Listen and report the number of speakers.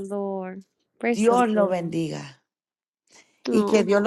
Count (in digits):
2